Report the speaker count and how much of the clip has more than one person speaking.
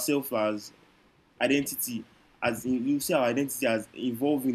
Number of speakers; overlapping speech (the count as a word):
one, no overlap